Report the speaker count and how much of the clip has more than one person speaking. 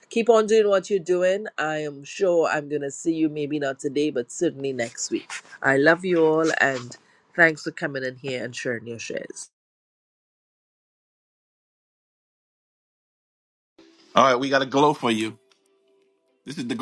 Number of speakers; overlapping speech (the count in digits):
2, no overlap